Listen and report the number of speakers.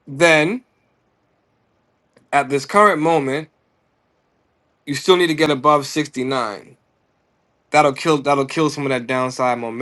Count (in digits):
1